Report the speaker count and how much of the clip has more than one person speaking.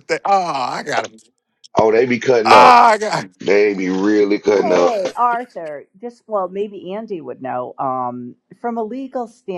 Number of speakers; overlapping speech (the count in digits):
3, about 7%